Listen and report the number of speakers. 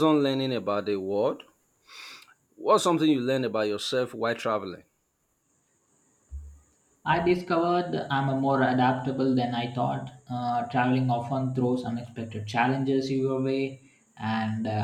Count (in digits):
2